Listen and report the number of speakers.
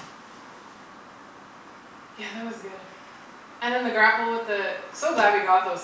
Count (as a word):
one